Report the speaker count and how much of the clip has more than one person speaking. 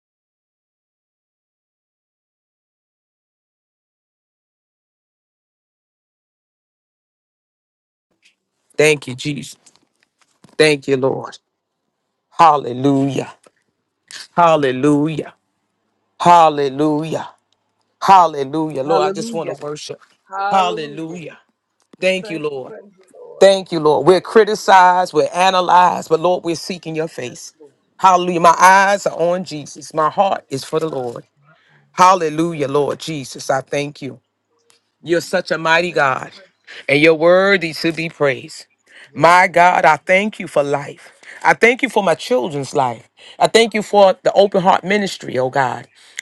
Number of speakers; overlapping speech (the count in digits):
2, about 9%